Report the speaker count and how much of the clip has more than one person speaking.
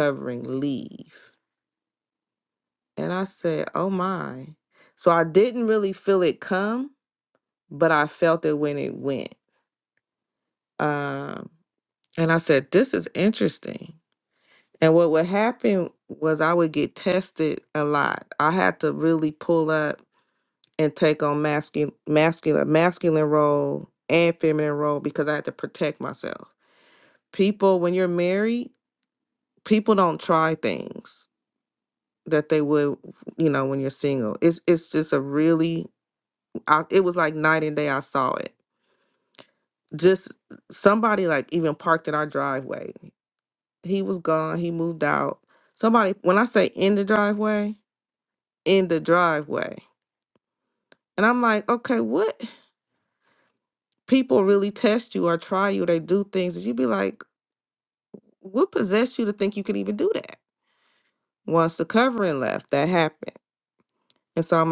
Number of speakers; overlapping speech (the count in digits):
1, no overlap